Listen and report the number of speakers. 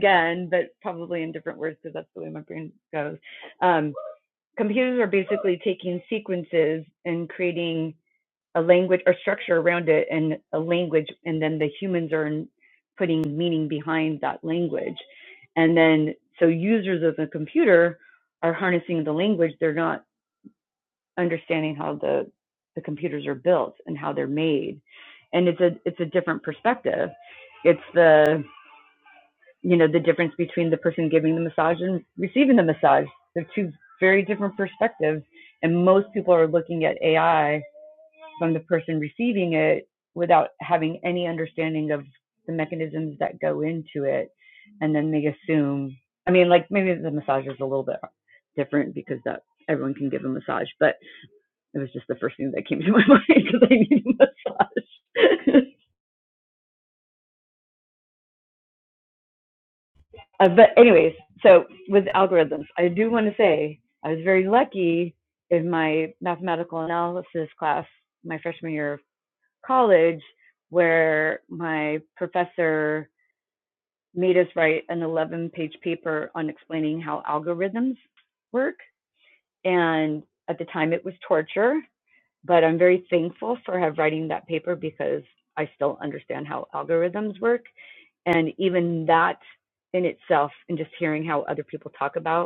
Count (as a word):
one